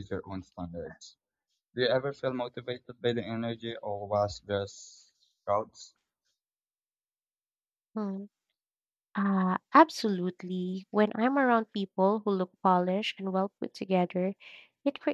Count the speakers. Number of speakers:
2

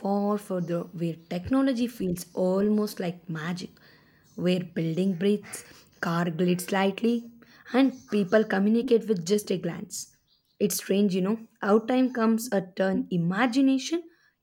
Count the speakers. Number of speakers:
1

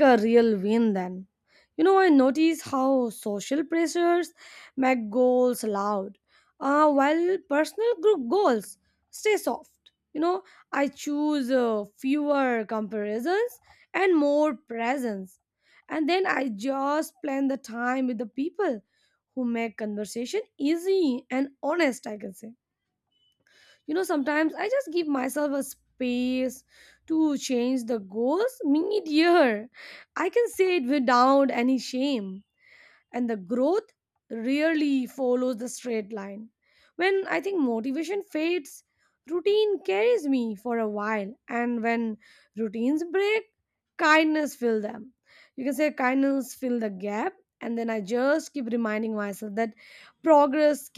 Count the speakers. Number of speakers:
1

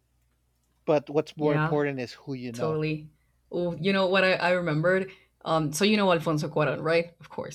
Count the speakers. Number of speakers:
2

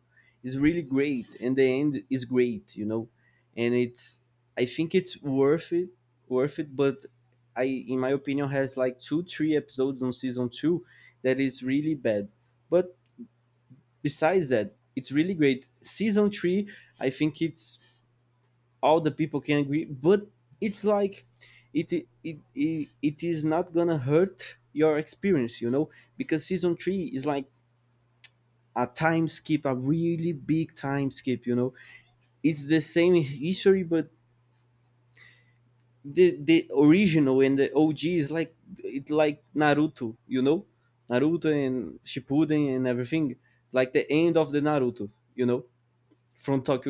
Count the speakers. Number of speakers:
1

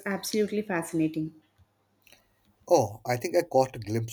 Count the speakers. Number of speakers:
2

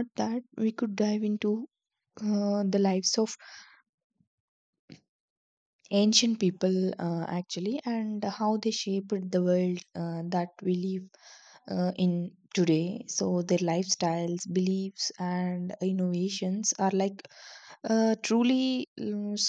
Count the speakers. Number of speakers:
1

